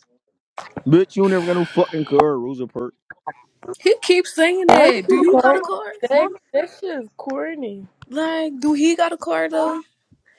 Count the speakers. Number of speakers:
3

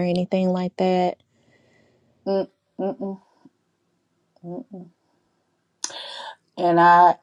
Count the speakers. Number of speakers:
2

